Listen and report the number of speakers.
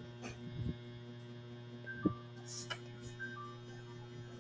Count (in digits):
0